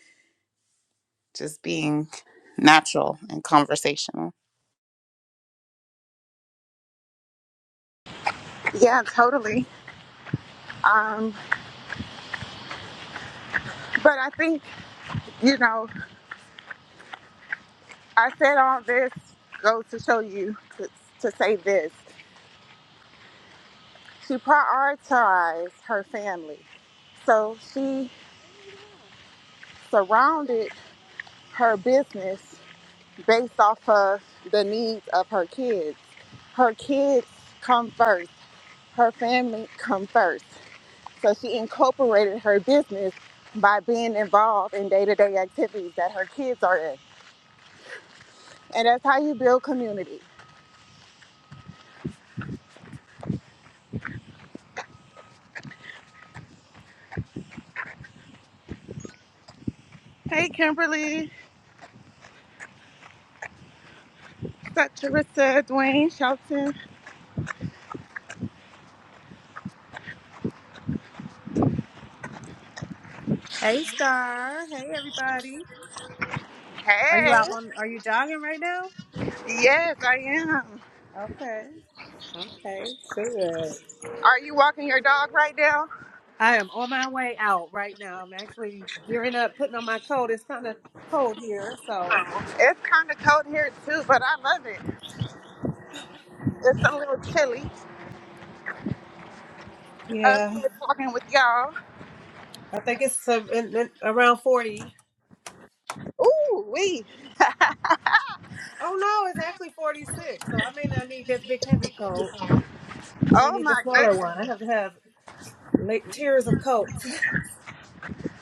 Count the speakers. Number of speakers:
3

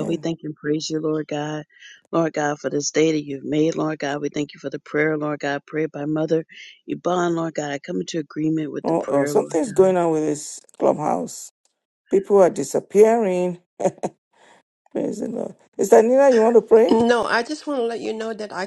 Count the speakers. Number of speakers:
3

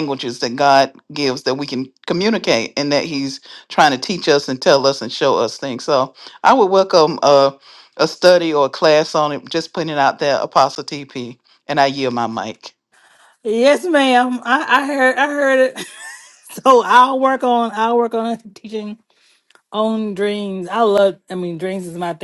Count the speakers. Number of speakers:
2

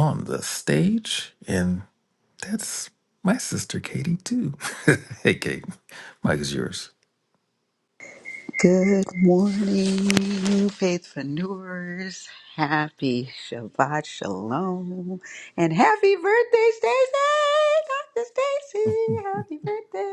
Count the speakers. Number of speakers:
2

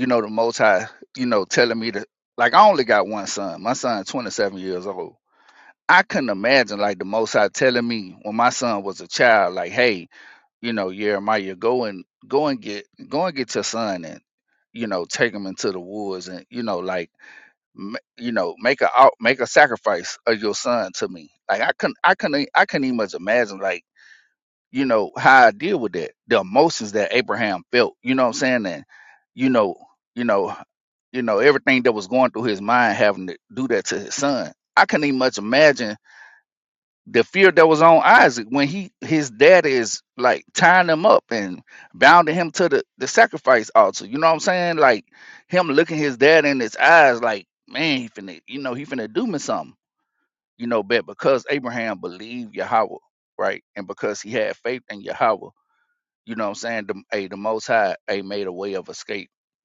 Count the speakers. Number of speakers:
1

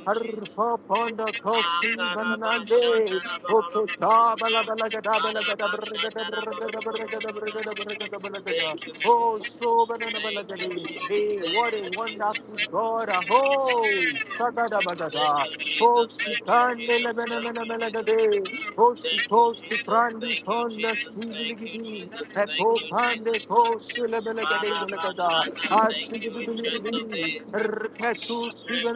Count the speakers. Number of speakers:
2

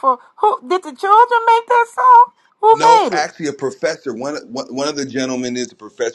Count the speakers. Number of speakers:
2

